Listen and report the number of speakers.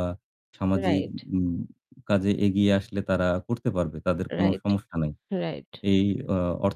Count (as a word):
two